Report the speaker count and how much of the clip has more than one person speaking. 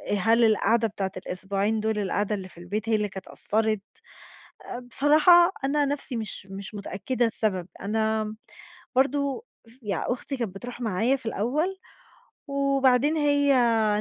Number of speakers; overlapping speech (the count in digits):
1, no overlap